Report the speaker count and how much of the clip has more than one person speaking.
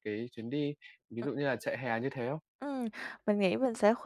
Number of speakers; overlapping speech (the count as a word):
two, no overlap